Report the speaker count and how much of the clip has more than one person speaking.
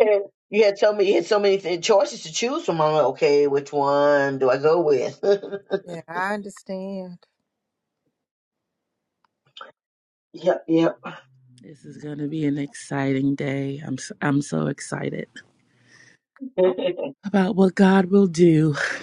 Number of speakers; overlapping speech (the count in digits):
3, no overlap